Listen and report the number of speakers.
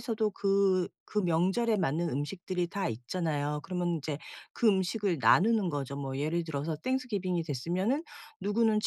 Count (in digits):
1